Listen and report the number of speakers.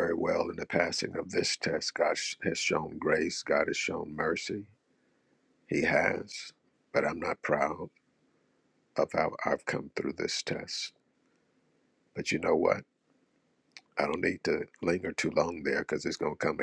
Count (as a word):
one